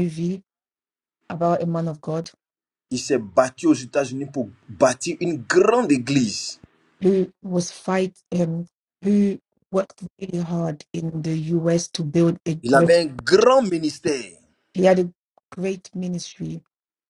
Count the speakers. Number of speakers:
2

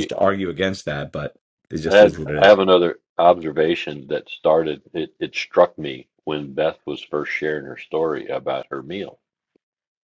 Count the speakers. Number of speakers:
2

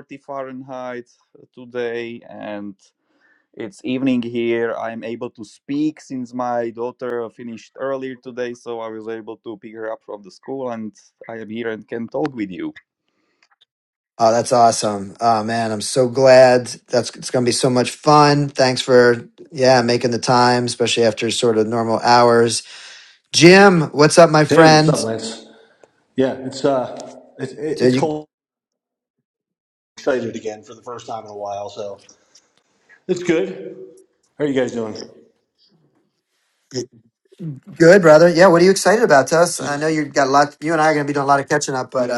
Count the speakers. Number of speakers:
3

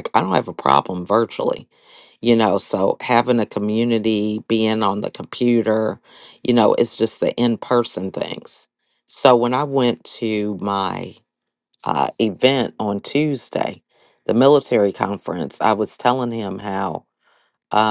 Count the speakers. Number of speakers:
1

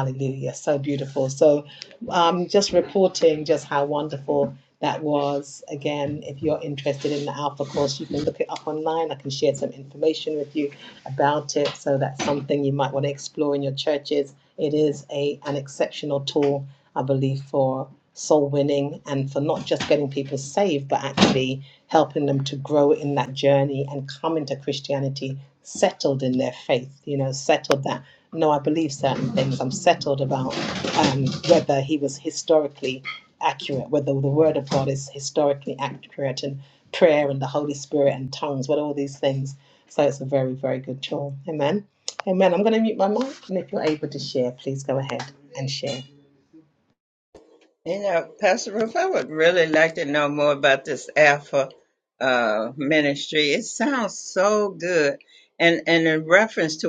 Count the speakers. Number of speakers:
2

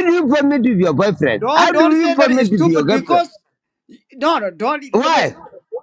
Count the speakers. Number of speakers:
2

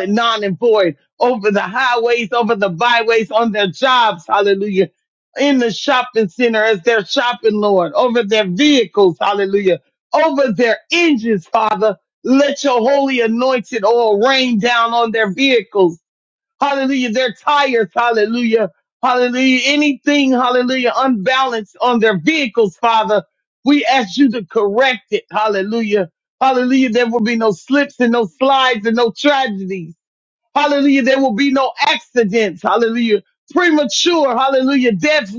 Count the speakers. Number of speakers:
1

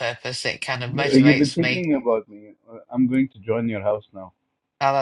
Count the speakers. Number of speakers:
2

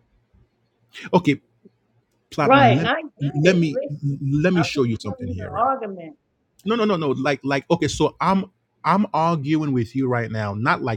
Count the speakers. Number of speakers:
2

